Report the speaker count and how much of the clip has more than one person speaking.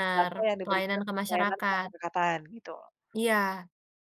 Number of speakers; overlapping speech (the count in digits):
2, about 43%